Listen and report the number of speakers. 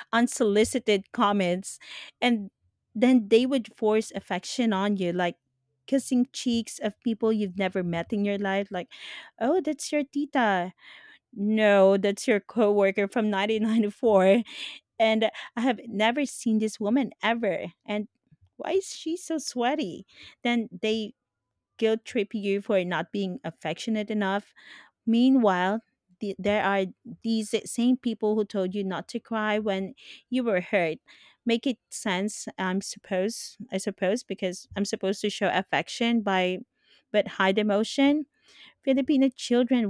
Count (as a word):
one